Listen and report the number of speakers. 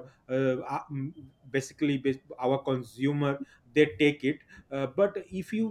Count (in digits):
1